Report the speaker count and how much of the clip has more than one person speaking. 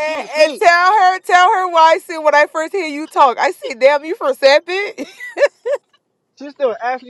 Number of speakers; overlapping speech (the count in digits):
2, about 8%